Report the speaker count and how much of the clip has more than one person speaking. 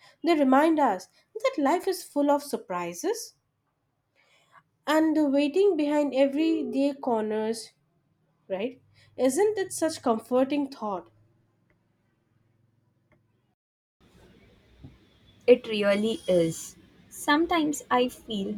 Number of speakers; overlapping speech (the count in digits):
2, no overlap